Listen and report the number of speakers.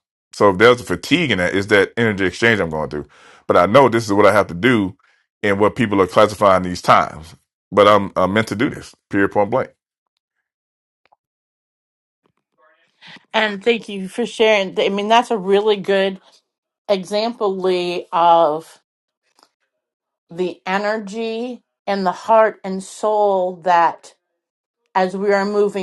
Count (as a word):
two